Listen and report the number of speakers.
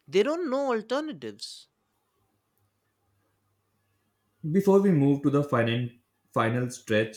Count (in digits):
2